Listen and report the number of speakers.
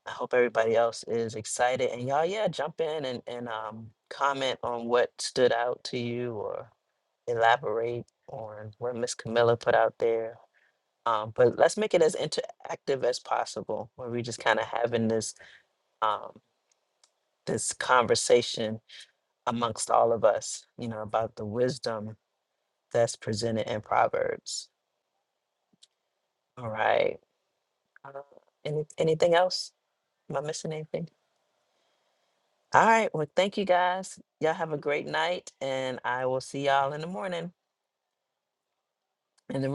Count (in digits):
1